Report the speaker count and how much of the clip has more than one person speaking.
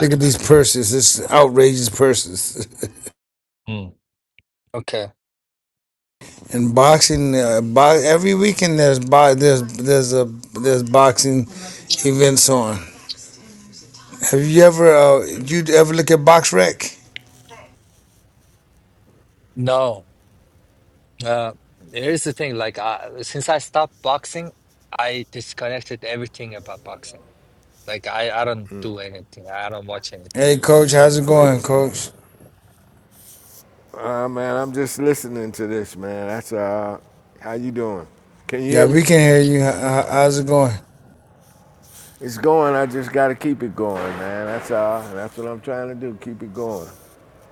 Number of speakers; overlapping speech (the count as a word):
three, about 1%